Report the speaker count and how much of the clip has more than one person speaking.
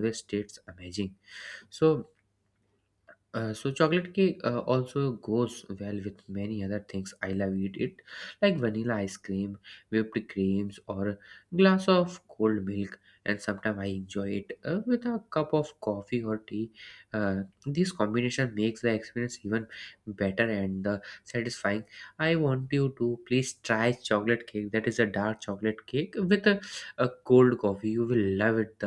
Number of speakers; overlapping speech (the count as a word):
one, no overlap